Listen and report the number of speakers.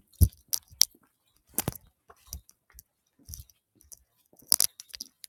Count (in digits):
0